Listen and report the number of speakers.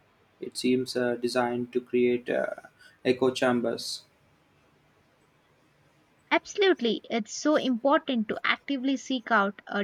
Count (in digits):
2